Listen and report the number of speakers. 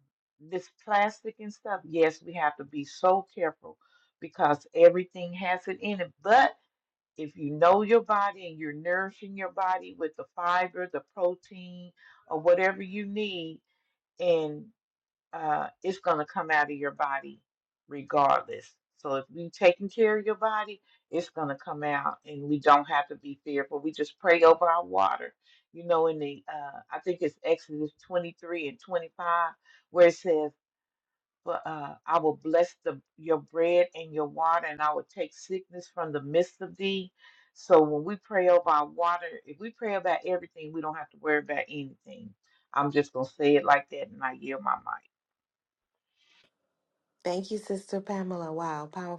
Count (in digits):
2